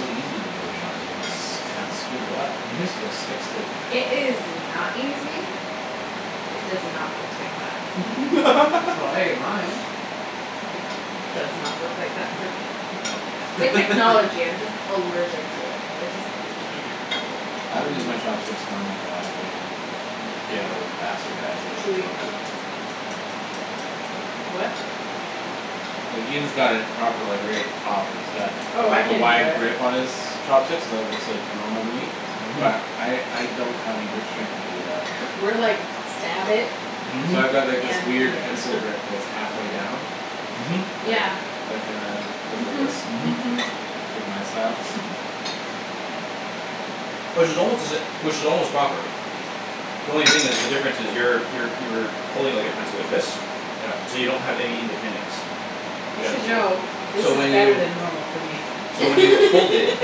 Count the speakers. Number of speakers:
4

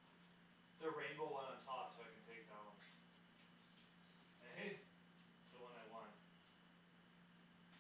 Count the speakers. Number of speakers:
1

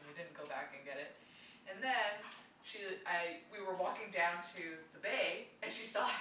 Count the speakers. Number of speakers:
1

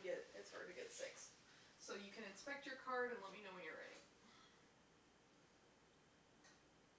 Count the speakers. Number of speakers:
1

